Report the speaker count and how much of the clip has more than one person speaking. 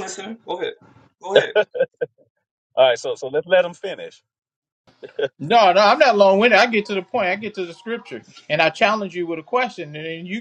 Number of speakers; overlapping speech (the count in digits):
3, no overlap